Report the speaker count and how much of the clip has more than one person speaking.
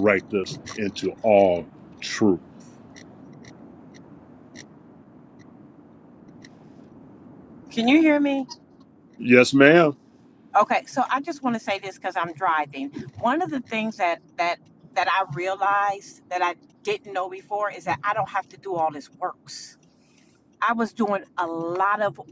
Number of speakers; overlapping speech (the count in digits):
2, no overlap